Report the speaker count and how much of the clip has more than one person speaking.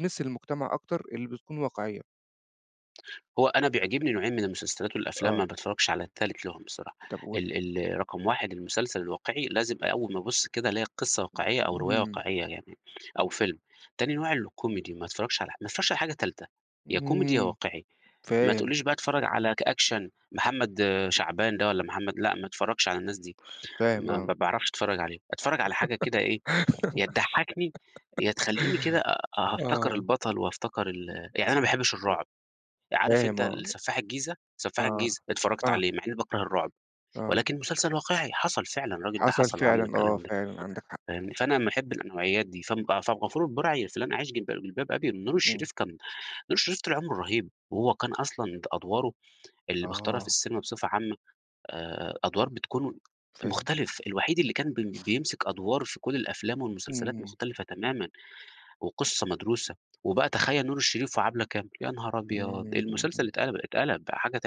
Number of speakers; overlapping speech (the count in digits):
2, about 11%